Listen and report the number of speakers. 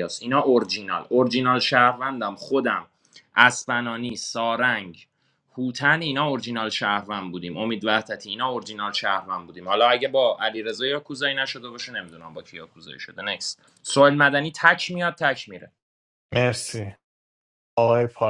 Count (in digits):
2